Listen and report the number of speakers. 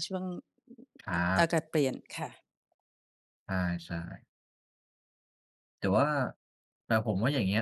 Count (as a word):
two